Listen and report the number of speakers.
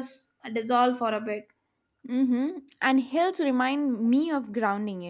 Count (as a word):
two